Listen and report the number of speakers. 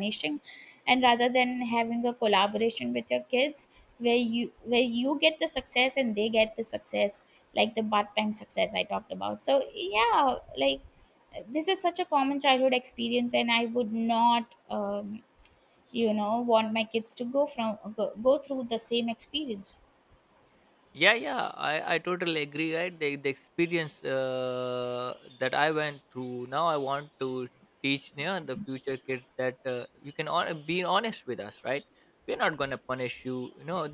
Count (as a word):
two